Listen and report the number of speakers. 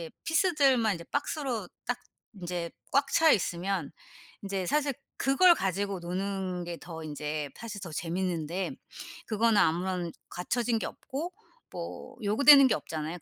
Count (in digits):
1